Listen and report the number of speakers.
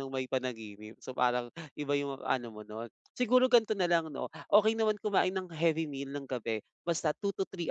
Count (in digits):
1